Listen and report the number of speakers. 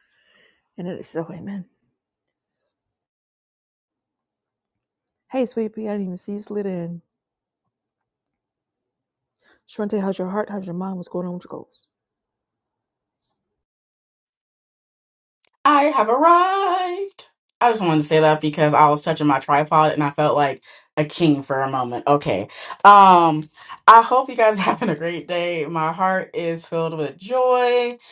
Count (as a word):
two